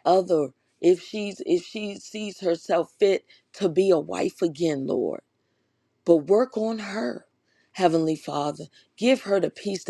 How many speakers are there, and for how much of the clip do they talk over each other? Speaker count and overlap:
one, no overlap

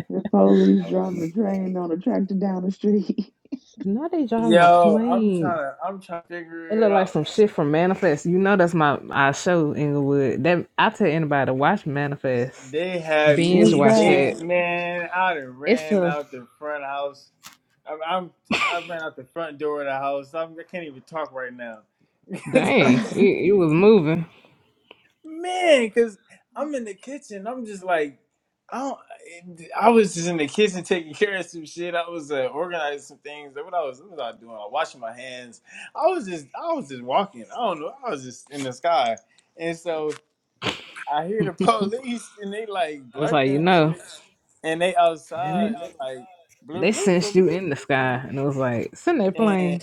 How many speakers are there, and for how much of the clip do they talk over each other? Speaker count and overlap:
three, about 11%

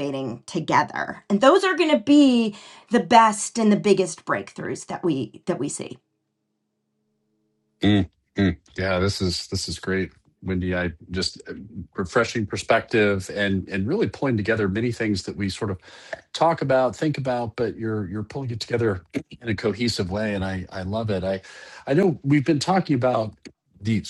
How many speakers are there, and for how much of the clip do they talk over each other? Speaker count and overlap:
two, no overlap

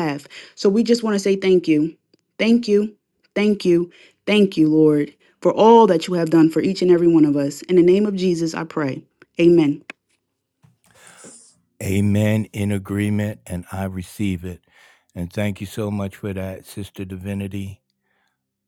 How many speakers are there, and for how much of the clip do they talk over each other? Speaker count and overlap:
two, no overlap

